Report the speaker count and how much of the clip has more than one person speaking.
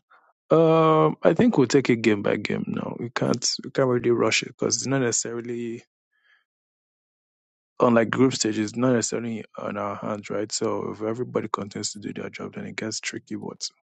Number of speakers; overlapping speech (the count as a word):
one, no overlap